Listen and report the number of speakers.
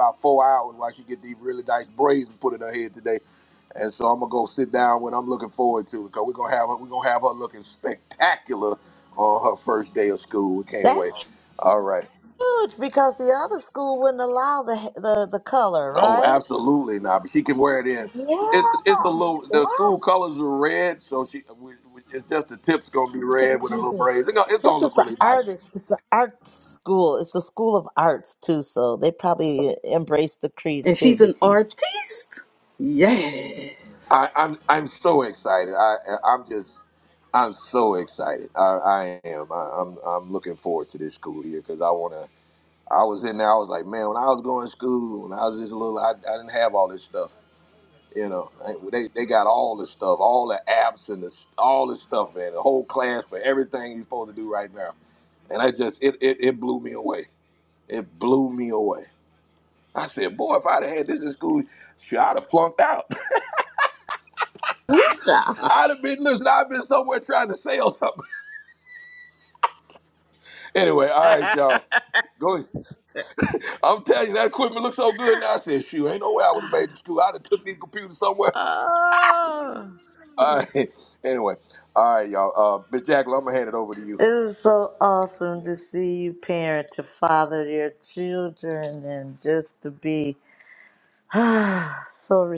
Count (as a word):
four